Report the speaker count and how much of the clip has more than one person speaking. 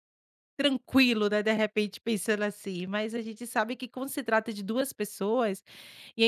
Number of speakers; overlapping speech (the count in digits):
1, no overlap